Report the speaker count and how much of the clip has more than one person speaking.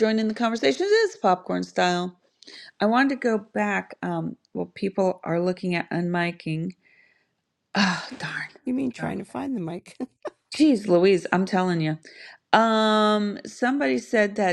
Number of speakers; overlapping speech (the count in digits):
2, about 1%